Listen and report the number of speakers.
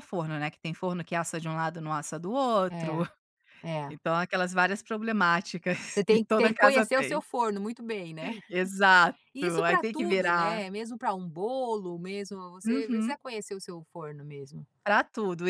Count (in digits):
2